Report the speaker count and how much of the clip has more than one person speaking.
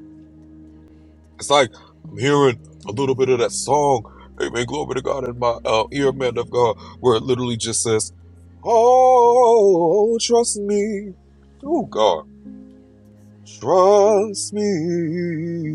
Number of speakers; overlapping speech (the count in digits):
1, no overlap